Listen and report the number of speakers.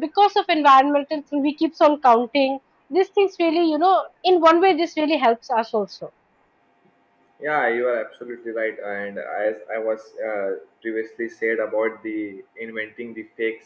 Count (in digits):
2